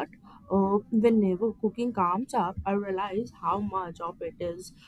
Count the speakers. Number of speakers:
1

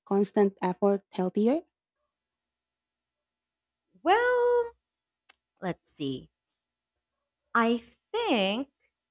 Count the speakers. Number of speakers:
2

